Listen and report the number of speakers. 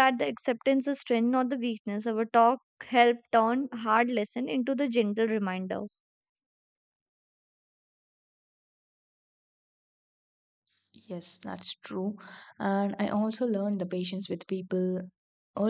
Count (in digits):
2